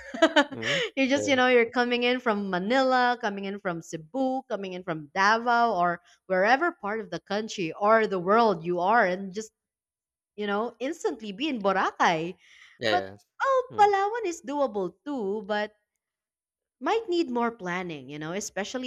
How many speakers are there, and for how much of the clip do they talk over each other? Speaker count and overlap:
two, about 3%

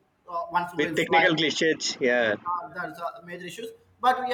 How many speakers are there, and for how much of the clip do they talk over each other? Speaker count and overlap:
two, about 12%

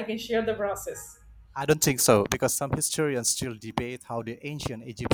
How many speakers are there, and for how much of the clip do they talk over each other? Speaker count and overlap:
two, no overlap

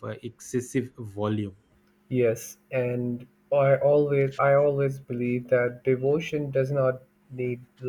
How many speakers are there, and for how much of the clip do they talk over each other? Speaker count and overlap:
two, no overlap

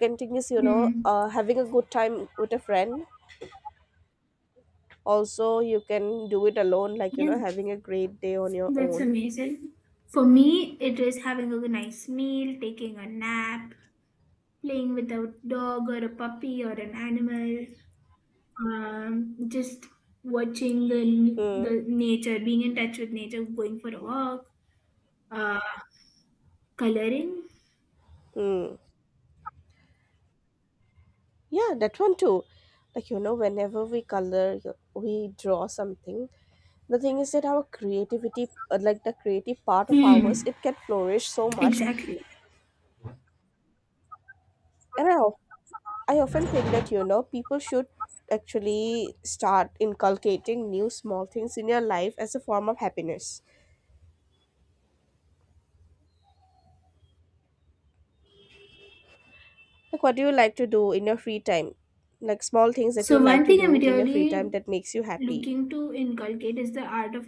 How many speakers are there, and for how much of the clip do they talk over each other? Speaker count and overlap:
two, about 6%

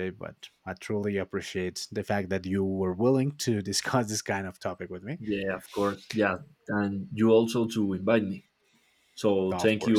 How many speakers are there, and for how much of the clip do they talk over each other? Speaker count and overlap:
two, about 5%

